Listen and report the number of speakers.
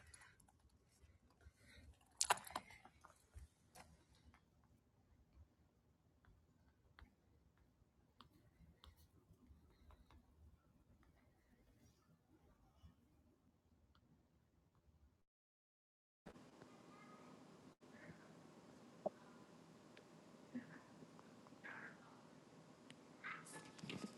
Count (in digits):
0